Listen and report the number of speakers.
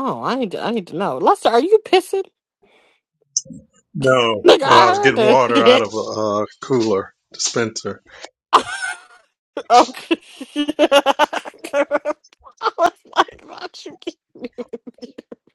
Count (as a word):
two